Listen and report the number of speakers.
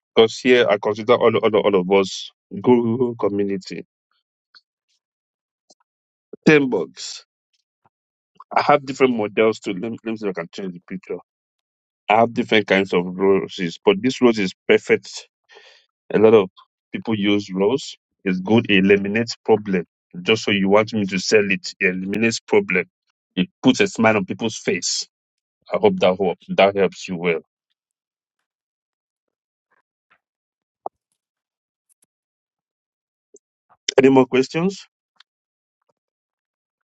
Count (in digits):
1